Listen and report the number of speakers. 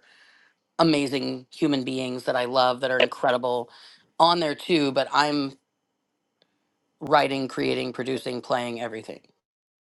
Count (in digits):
1